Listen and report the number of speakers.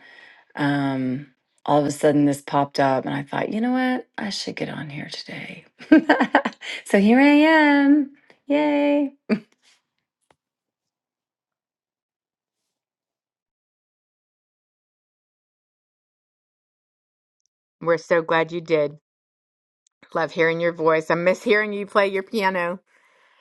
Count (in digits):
2